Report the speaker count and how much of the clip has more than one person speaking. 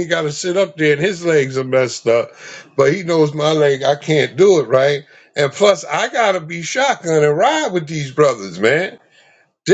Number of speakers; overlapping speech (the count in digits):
1, no overlap